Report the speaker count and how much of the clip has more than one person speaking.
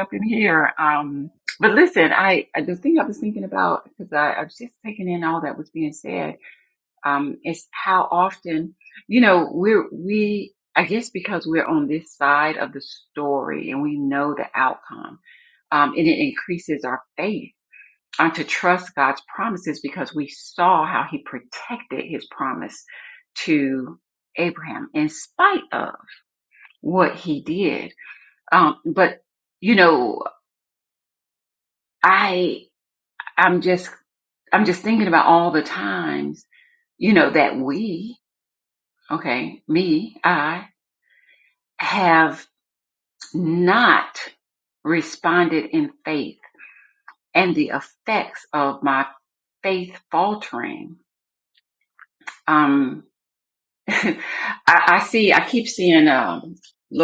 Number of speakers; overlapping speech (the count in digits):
1, no overlap